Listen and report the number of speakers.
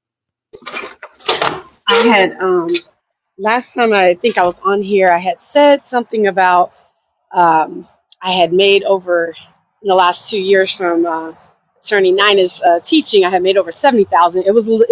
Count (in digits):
1